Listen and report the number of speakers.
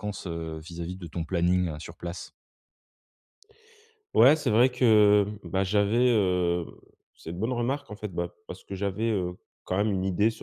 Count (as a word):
two